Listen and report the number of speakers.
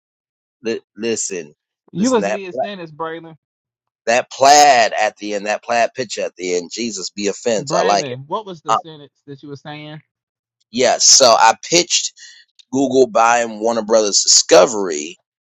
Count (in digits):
2